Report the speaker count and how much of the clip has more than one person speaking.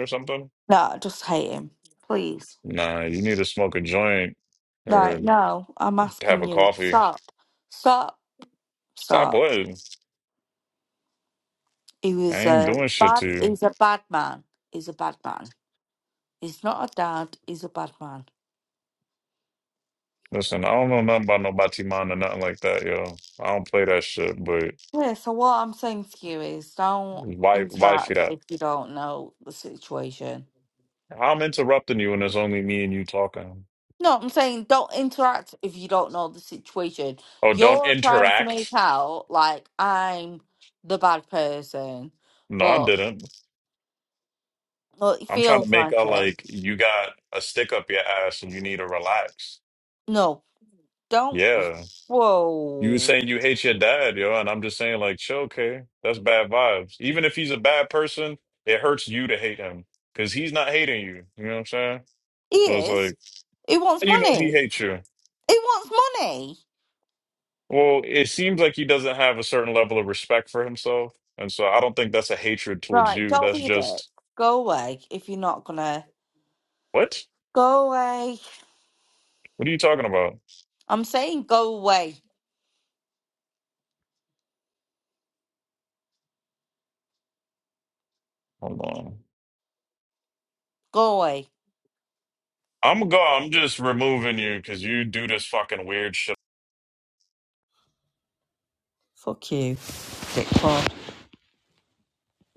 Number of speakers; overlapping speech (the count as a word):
two, about 8%